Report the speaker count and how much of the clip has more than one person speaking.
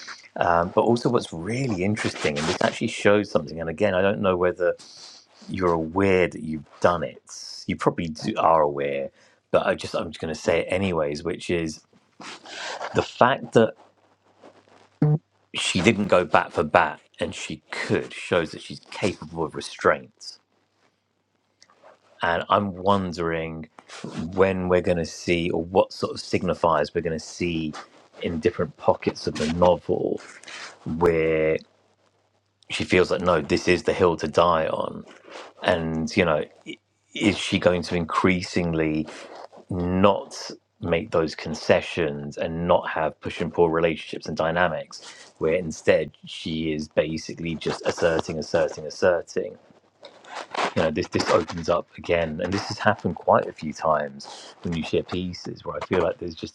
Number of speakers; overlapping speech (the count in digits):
1, no overlap